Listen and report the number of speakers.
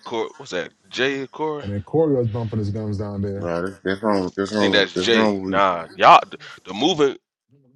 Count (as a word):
three